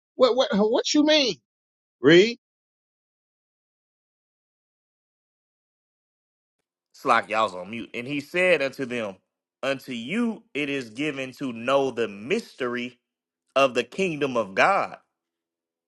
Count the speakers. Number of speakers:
2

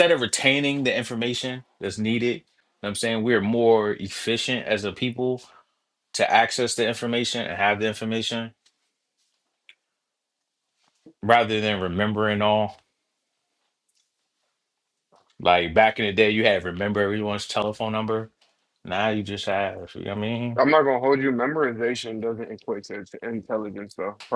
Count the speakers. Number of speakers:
2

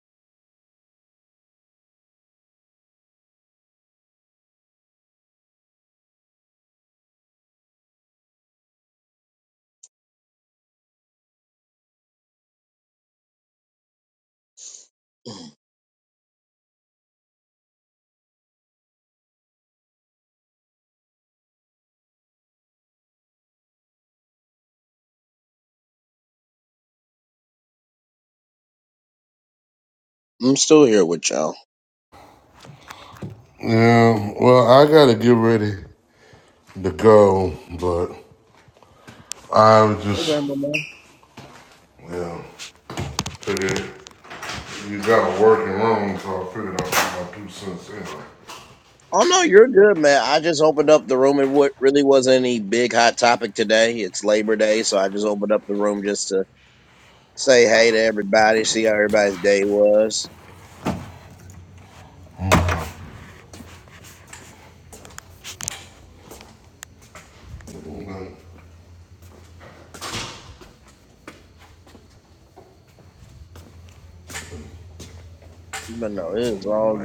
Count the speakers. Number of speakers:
2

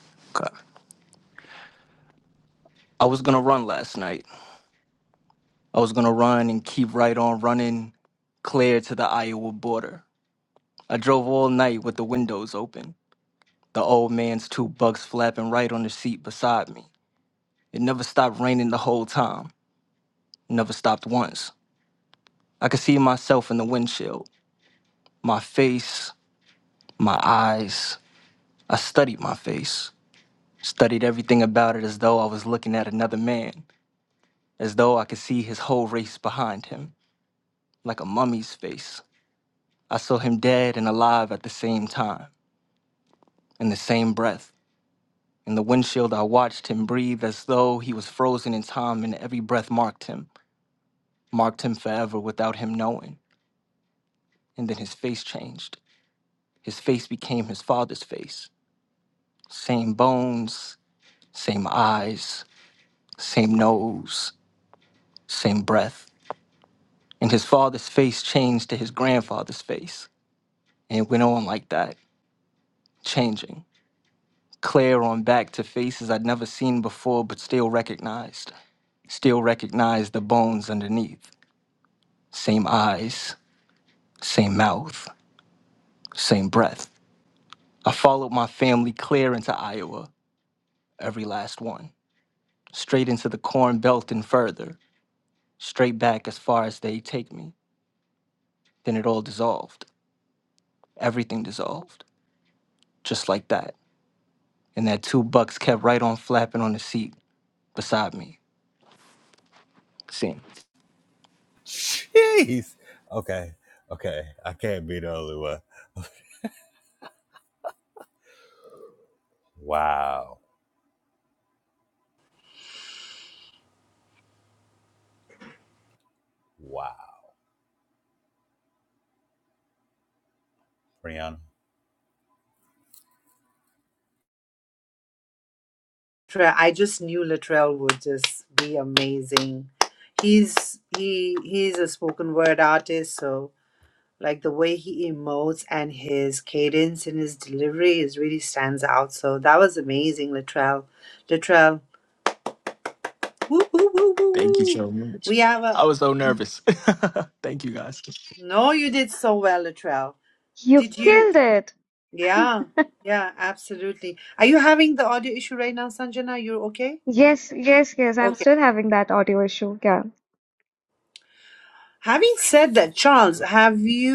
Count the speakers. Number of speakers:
4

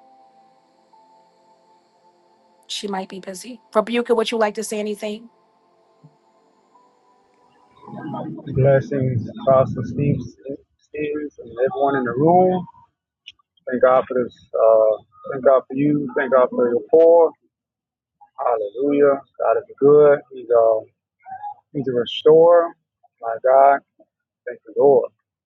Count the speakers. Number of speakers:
2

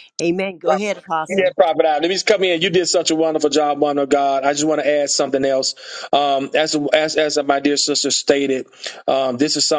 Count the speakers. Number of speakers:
2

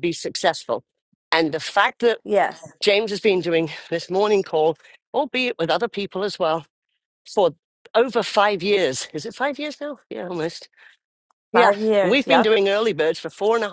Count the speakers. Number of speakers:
2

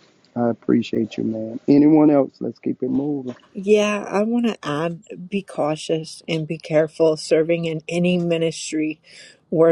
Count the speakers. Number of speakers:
2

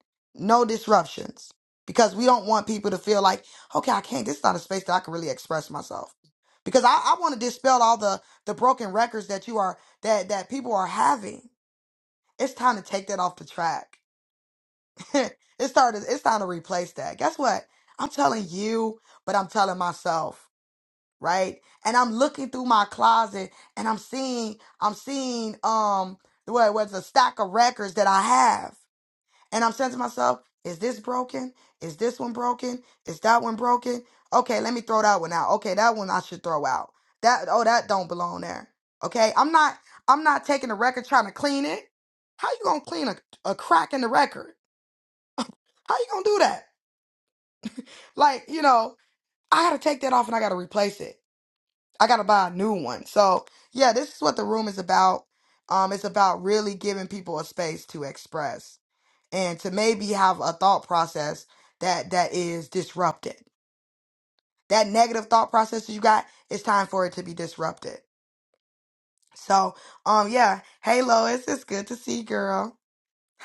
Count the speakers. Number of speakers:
1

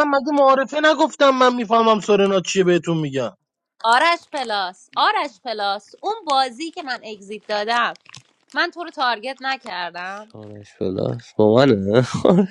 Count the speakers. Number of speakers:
3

